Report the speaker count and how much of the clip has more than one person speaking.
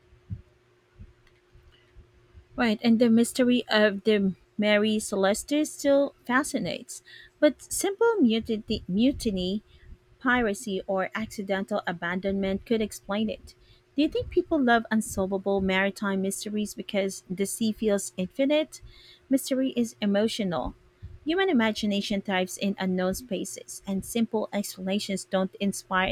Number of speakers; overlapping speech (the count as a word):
one, no overlap